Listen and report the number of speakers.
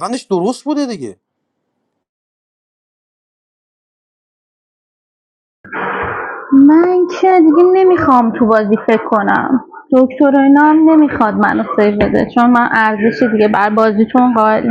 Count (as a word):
two